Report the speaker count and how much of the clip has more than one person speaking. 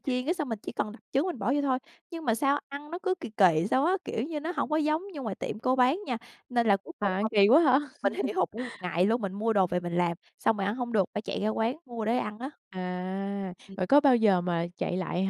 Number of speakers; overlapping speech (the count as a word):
two, about 1%